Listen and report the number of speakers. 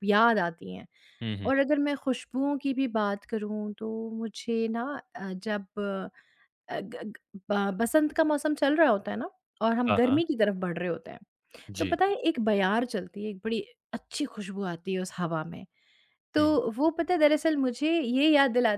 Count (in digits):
2